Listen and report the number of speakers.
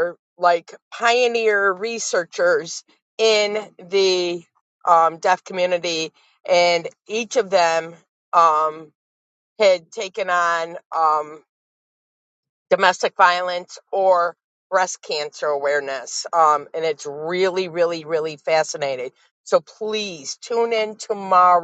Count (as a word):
one